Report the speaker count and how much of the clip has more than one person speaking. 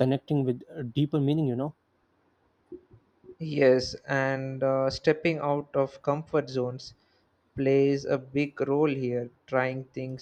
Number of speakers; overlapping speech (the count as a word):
two, no overlap